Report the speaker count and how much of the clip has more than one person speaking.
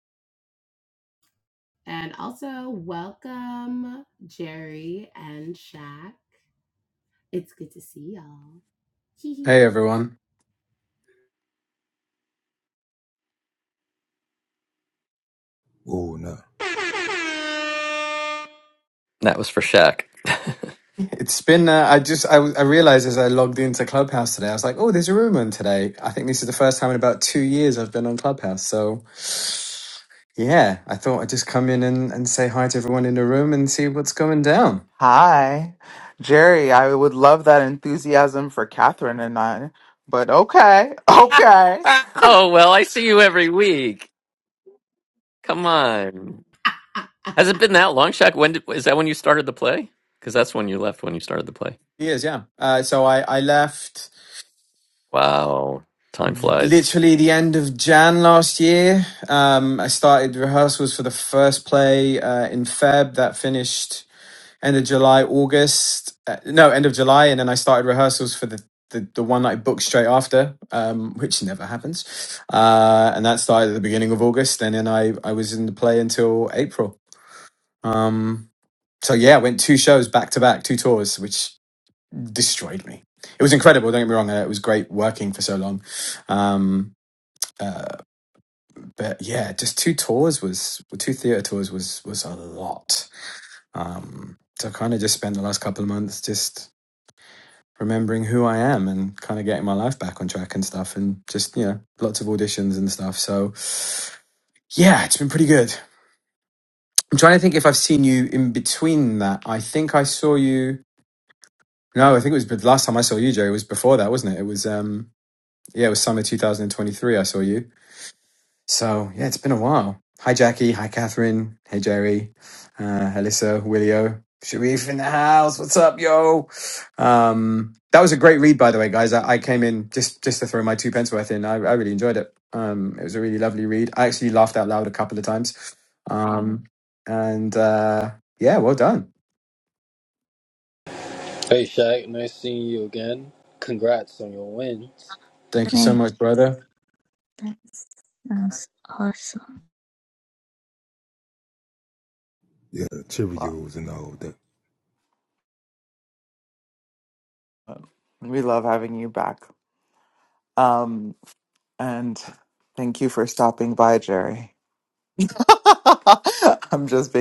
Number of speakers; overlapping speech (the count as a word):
seven, about 1%